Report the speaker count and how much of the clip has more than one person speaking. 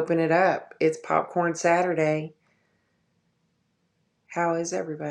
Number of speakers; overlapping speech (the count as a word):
one, no overlap